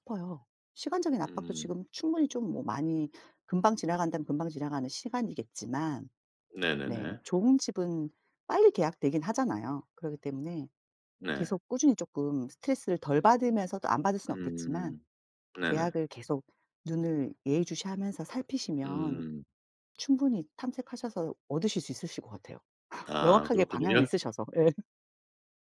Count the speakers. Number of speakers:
two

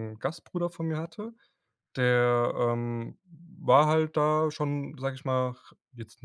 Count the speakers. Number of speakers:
one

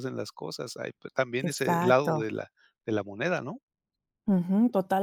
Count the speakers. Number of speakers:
two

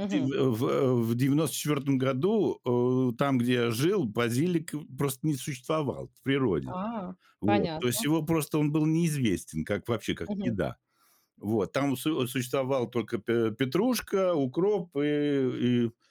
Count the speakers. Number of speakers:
two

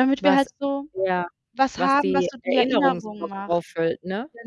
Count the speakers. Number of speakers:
two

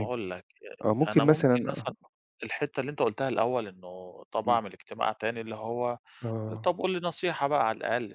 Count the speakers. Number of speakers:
two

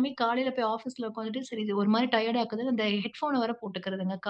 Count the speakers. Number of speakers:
one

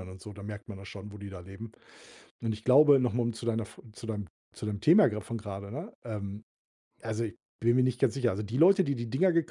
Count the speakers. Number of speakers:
one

